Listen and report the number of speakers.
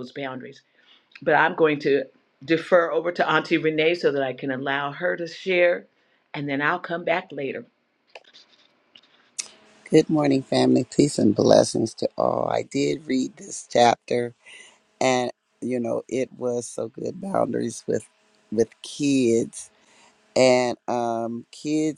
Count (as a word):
two